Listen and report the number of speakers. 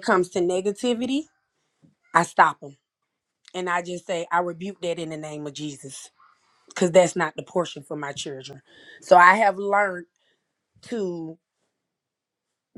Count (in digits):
1